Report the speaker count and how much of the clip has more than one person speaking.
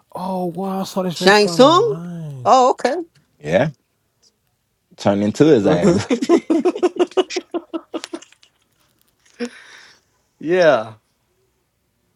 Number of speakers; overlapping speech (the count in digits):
3, about 6%